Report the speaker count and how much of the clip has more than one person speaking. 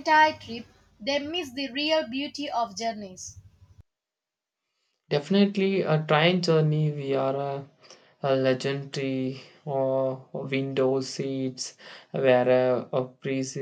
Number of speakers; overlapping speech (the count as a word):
two, no overlap